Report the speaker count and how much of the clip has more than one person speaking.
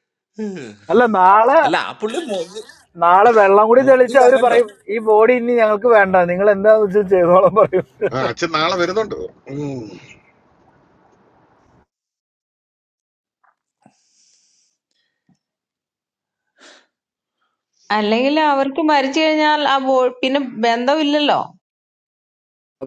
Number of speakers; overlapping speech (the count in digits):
4, about 4%